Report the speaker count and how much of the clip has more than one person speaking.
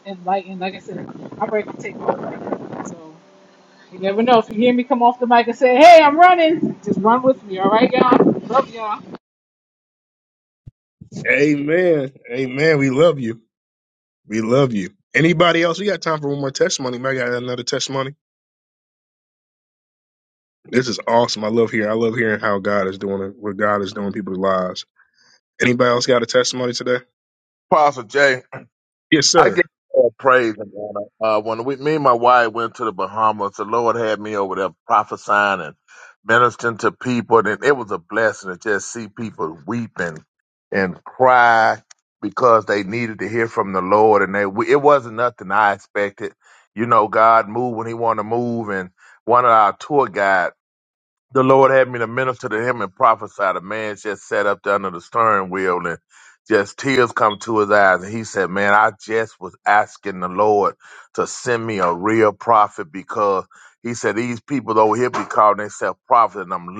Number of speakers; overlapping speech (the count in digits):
3, under 1%